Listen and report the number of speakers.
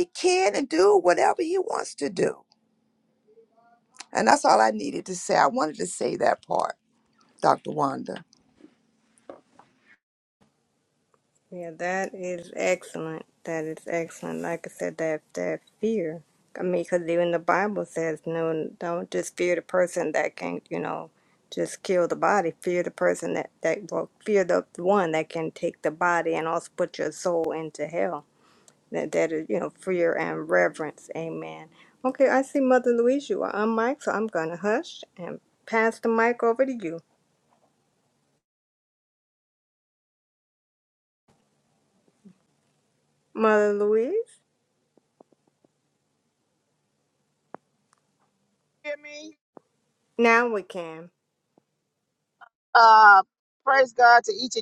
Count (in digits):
3